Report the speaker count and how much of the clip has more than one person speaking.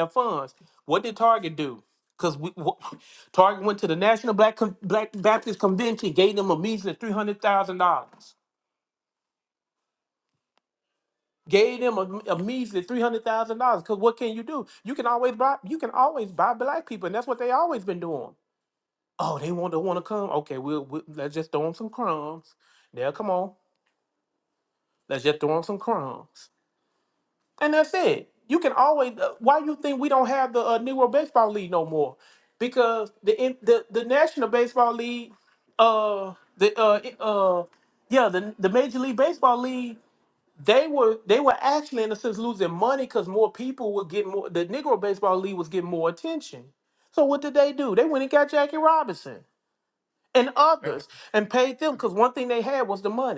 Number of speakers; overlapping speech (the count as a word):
one, no overlap